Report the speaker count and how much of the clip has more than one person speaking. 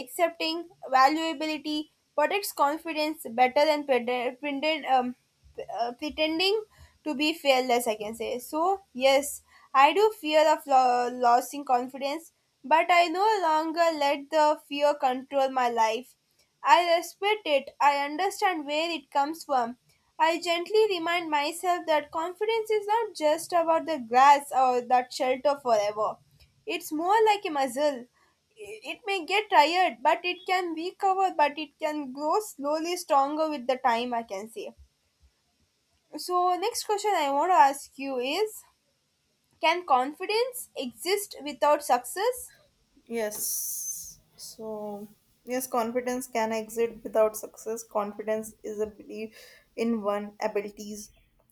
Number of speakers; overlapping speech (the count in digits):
2, no overlap